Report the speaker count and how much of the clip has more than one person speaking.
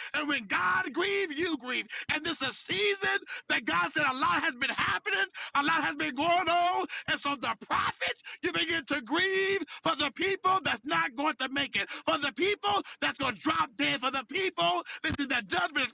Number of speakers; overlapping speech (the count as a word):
one, no overlap